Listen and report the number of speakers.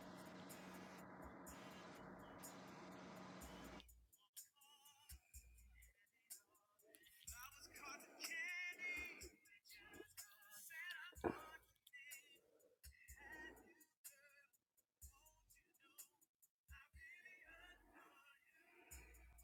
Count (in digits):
0